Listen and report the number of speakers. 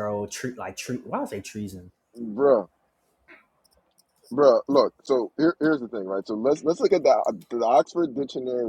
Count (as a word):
two